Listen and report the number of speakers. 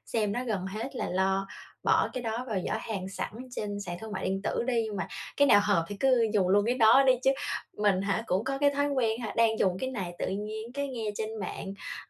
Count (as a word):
one